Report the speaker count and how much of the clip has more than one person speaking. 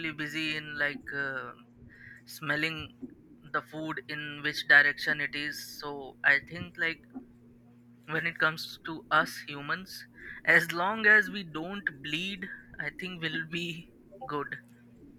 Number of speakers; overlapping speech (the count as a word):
one, no overlap